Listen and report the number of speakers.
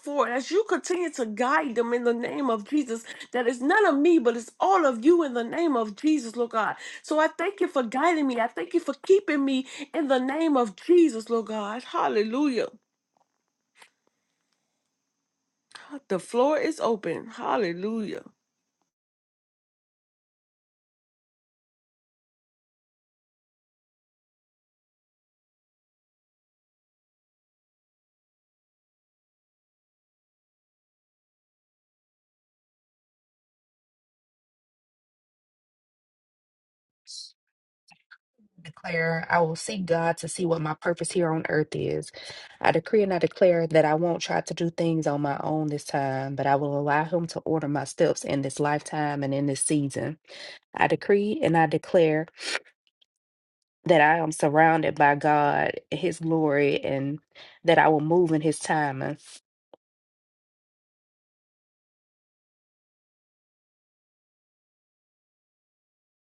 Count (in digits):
2